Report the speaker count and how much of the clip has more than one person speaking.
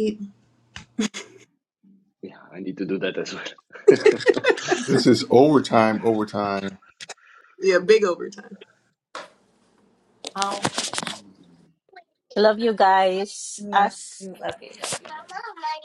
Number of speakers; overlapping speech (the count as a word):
five, about 1%